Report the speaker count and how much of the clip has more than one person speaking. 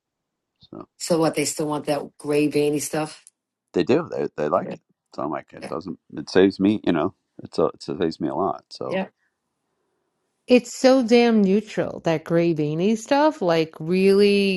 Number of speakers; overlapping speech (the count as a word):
three, about 2%